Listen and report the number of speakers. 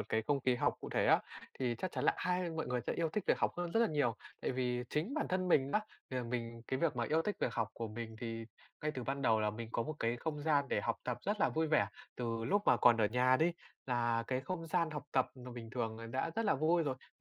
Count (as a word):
one